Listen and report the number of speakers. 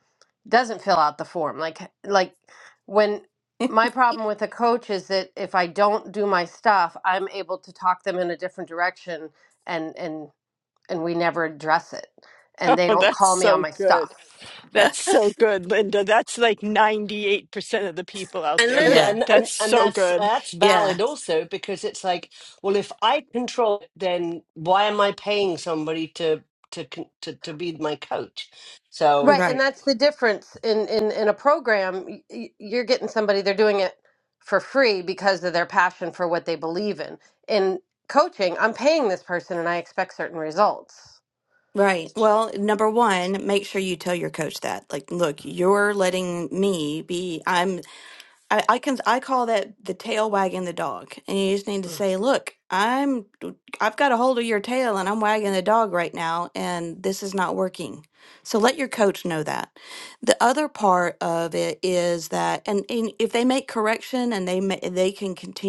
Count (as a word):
four